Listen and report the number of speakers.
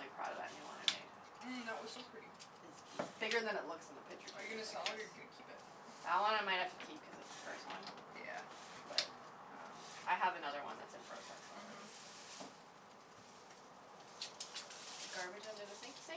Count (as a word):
two